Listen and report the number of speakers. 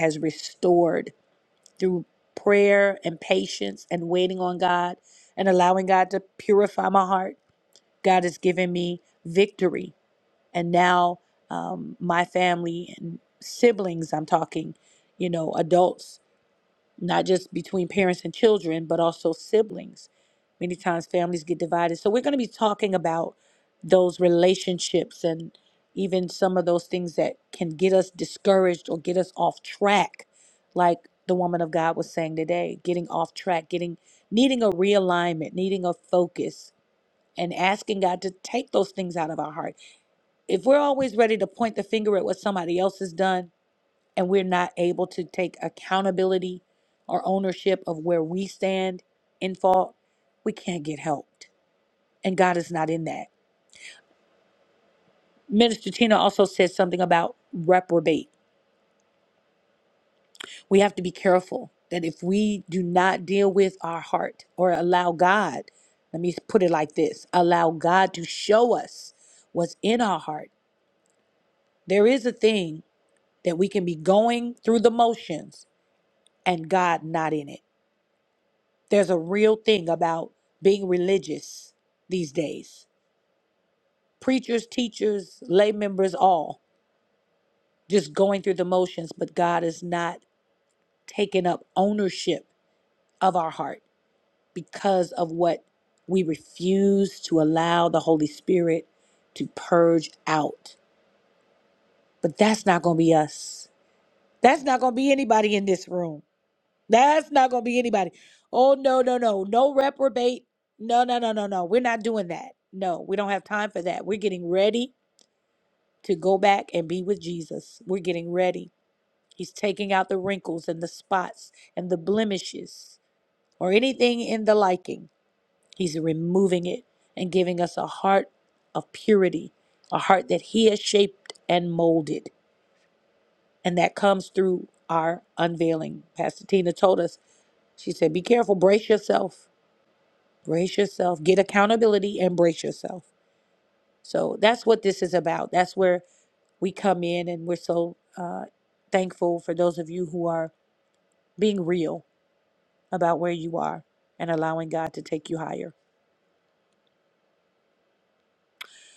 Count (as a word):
one